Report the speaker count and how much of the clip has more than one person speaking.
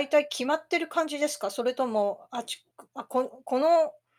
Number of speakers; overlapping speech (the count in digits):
1, no overlap